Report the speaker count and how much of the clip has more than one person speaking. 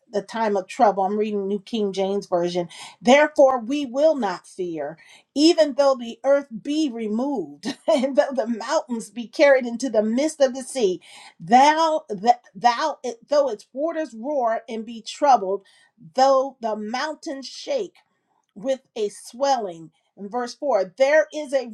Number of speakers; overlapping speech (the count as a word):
one, no overlap